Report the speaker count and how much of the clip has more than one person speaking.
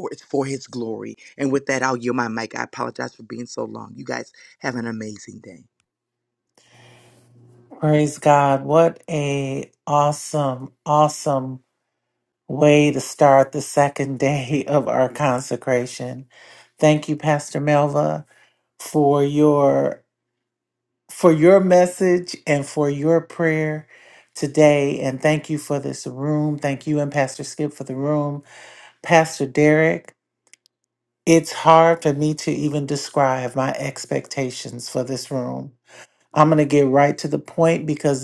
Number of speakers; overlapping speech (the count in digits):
2, no overlap